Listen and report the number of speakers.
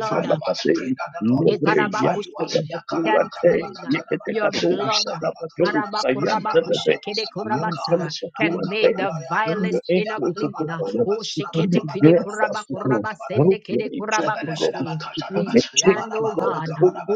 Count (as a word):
three